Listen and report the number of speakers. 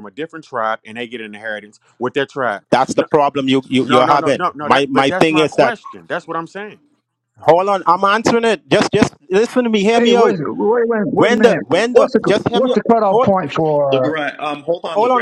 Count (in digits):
4